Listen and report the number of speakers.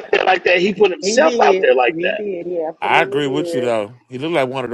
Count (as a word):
three